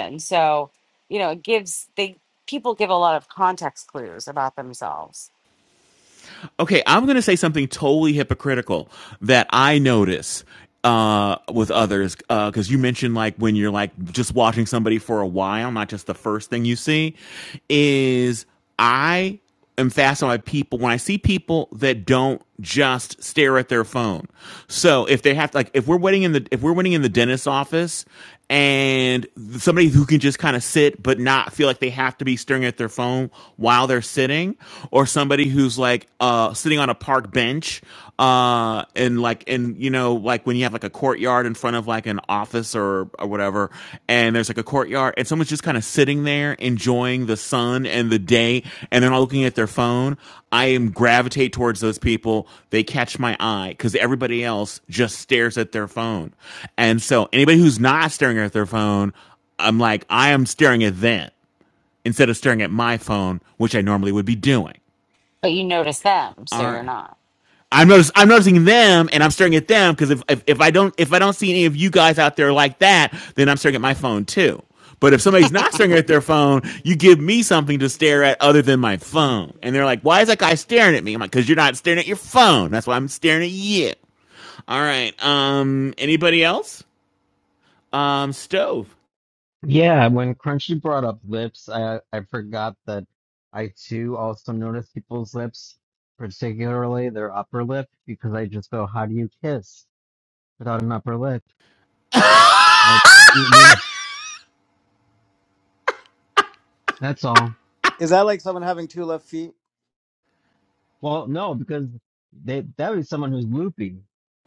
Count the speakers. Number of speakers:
four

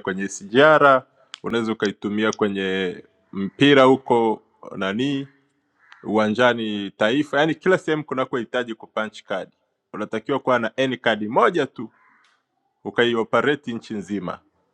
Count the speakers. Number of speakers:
one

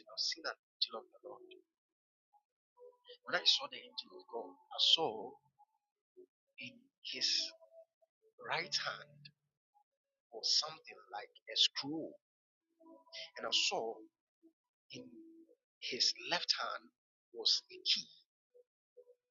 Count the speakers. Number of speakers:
one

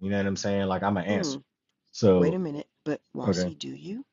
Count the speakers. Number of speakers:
two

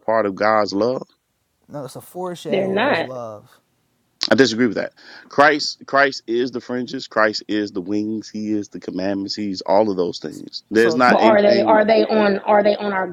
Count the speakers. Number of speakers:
three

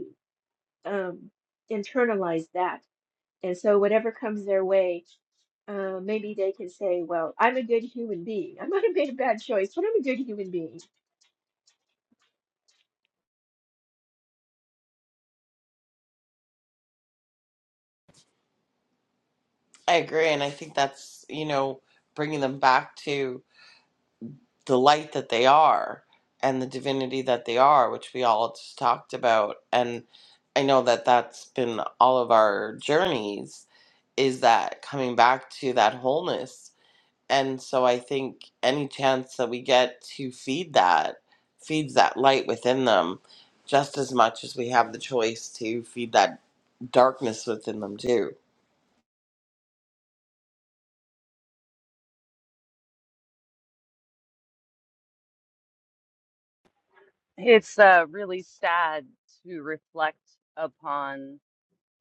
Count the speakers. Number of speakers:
three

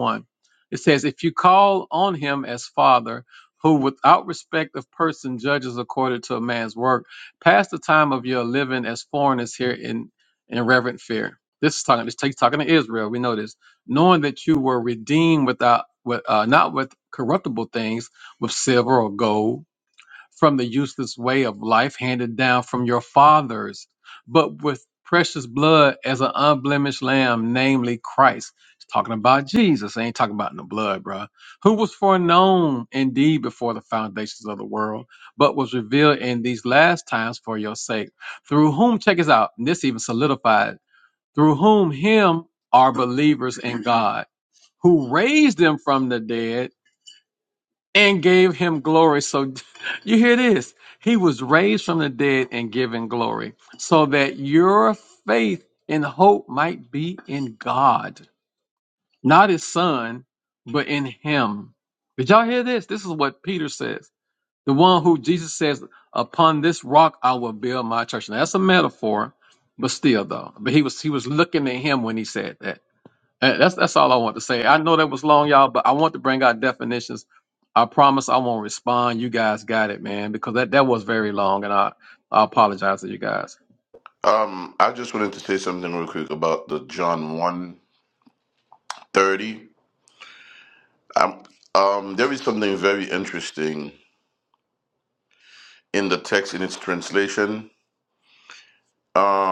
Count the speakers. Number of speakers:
two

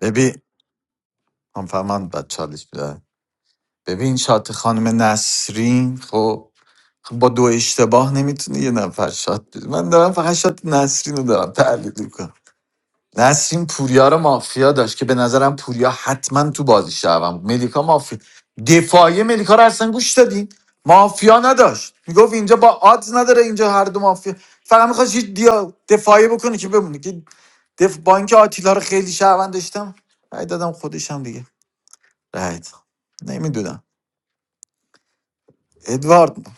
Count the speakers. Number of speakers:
one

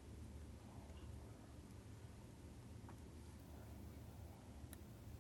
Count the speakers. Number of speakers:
zero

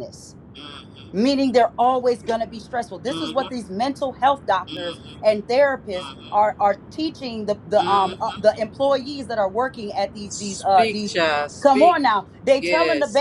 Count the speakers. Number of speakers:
two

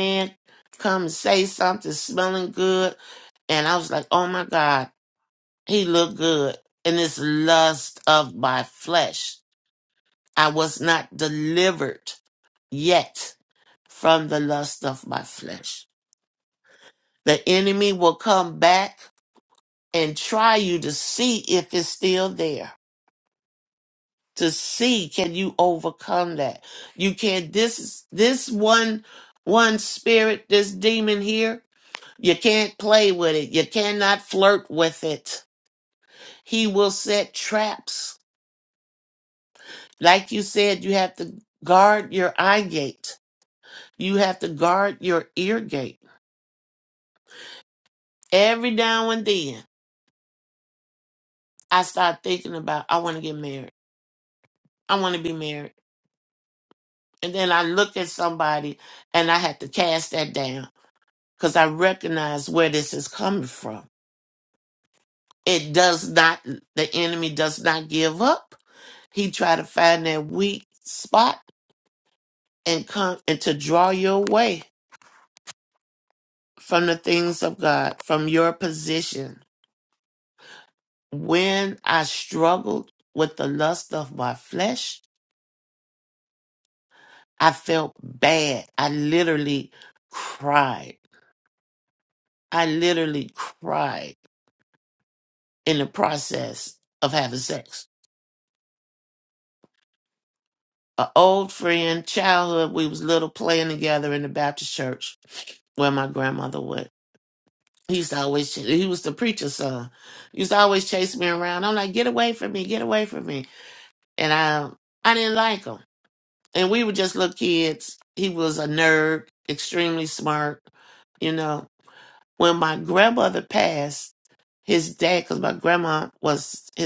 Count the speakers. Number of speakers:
one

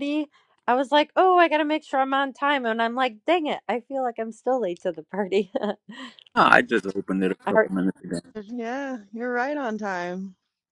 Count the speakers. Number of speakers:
three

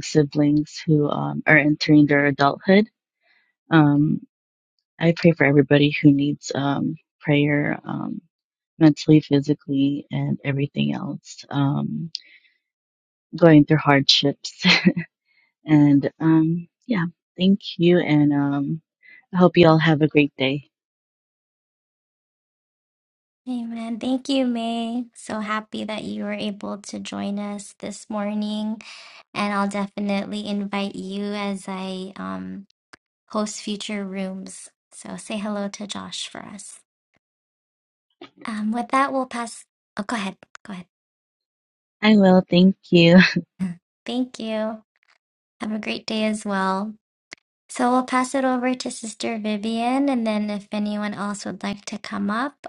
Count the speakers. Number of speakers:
two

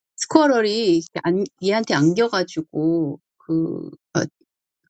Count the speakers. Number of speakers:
one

